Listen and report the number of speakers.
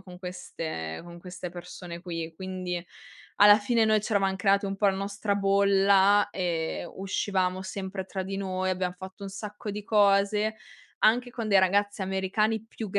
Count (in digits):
1